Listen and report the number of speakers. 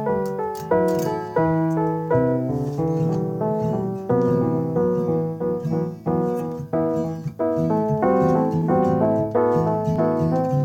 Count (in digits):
0